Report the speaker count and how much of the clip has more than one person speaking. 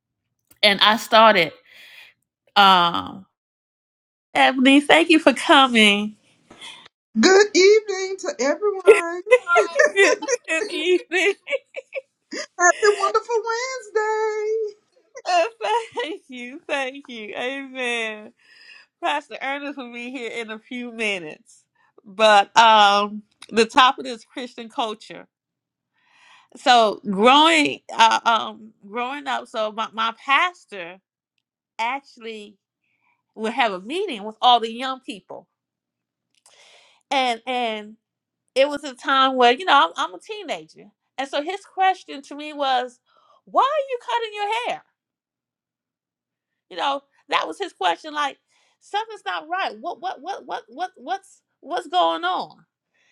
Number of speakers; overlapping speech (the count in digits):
2, about 1%